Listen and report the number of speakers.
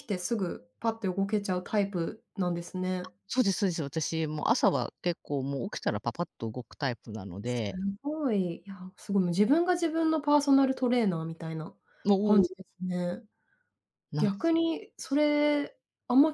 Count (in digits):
2